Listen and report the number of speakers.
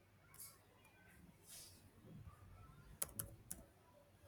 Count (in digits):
0